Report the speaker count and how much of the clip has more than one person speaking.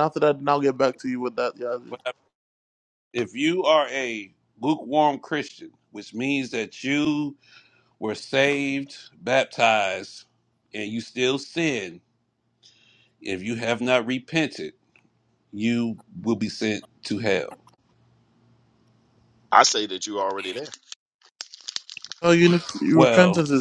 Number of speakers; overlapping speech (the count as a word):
three, about 2%